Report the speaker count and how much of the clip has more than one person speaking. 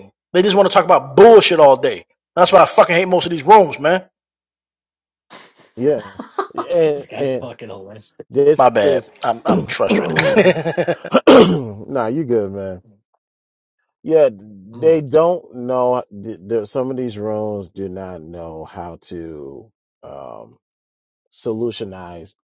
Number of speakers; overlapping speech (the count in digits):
3, about 5%